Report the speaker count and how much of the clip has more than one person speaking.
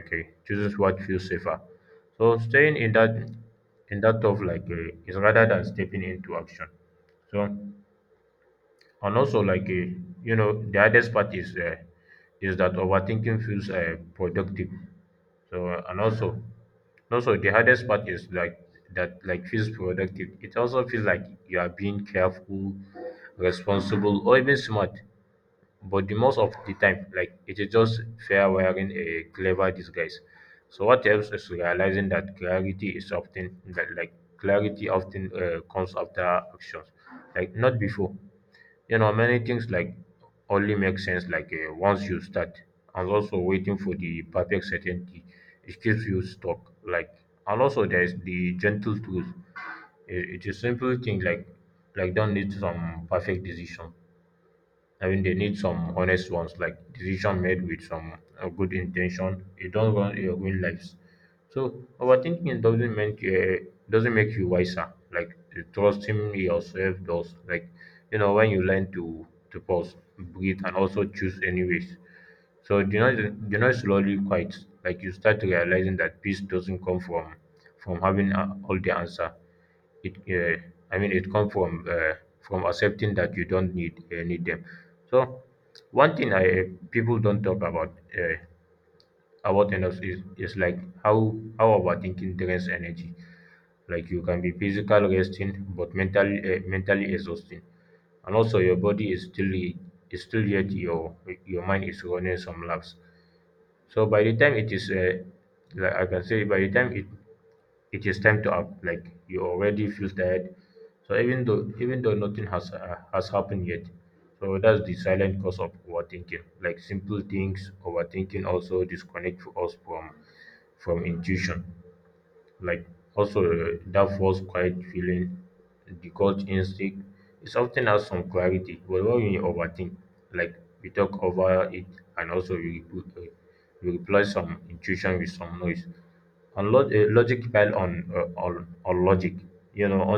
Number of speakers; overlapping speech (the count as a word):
one, no overlap